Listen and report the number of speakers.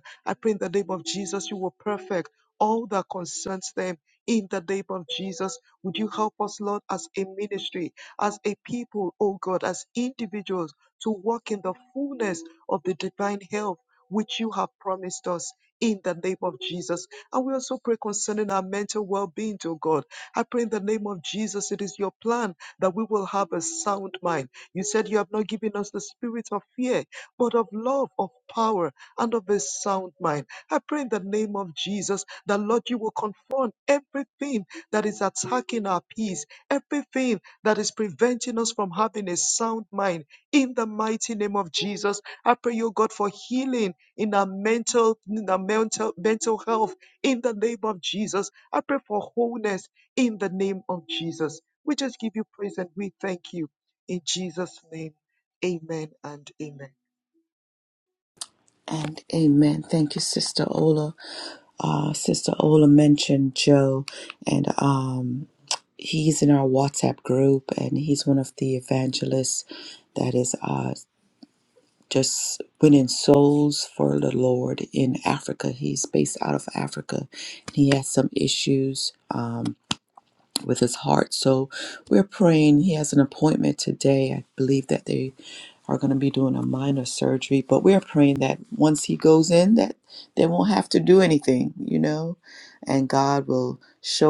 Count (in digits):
2